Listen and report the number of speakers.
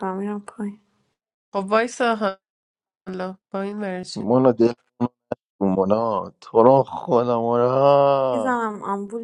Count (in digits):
3